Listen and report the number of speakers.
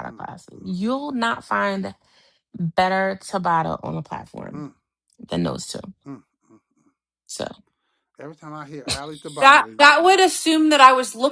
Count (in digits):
3